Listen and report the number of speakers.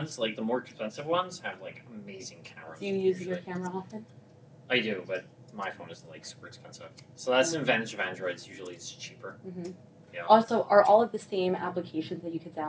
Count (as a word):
two